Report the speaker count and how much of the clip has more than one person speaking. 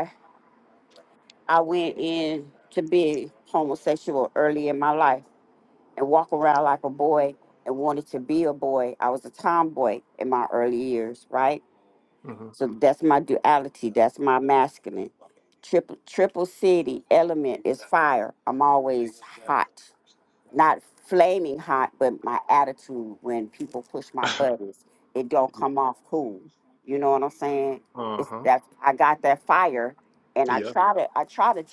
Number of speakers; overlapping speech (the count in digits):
2, about 2%